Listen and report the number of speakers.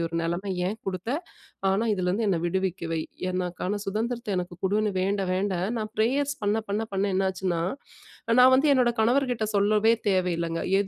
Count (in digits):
1